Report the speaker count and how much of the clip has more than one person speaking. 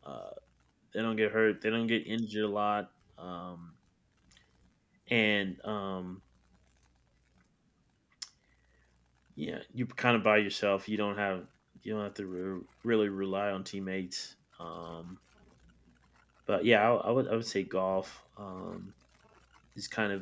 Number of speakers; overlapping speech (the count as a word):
one, no overlap